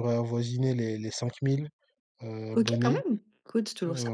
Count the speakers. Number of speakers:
2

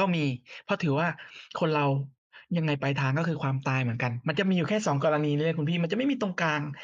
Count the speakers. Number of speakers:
1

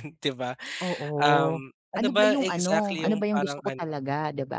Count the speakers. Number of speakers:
2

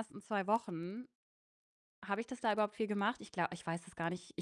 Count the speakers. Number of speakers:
1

